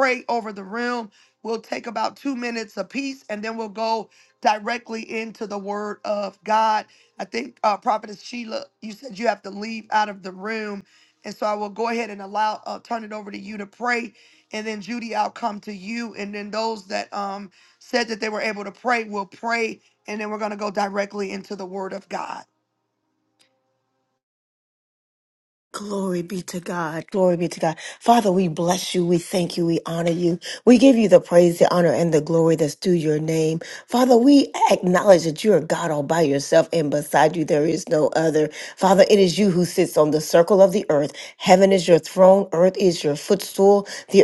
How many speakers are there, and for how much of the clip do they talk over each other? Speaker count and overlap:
2, no overlap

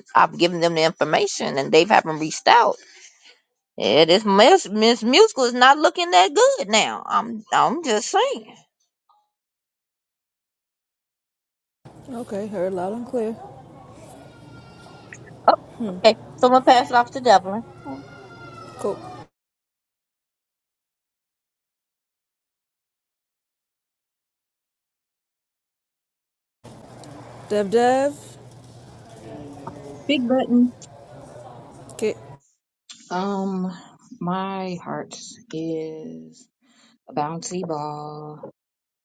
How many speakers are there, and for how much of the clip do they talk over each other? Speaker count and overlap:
3, no overlap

